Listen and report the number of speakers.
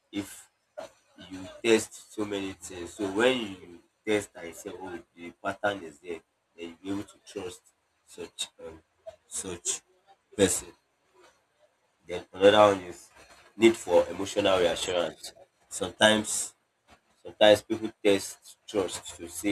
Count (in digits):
1